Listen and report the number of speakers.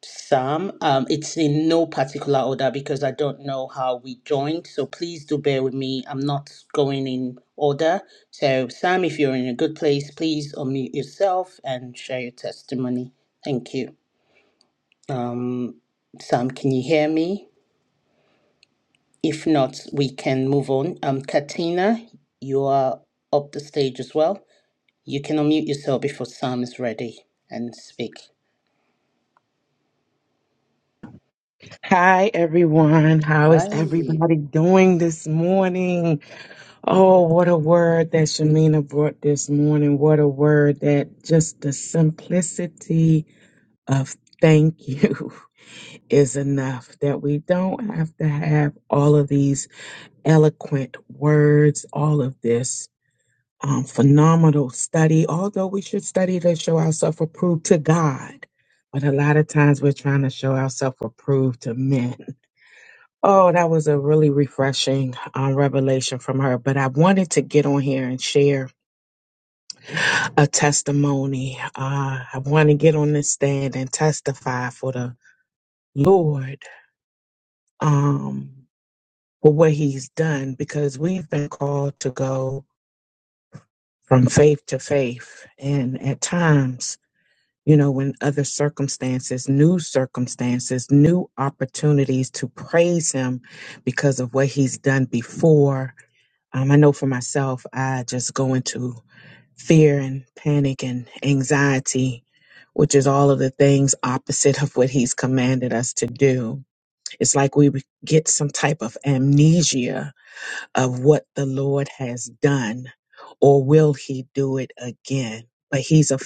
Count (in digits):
2